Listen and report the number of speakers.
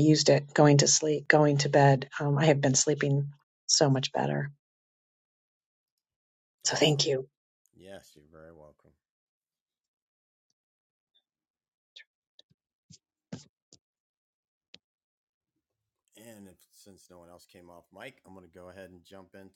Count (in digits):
2